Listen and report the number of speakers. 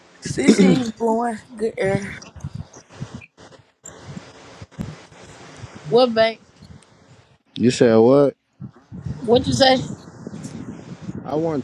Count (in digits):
3